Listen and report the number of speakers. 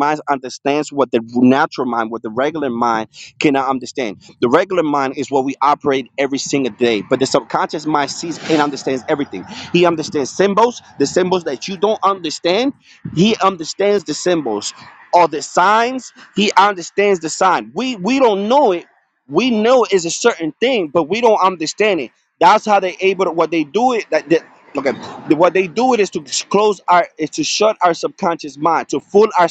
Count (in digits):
1